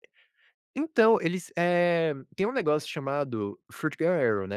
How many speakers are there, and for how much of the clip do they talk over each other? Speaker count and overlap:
one, no overlap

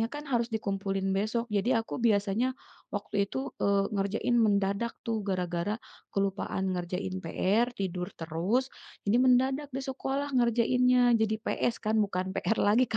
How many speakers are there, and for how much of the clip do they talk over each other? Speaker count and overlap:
one, no overlap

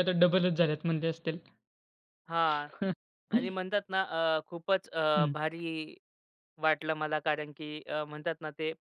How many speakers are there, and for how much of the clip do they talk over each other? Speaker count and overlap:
two, about 2%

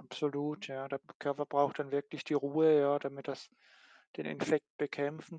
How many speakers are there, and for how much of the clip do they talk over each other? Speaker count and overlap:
one, no overlap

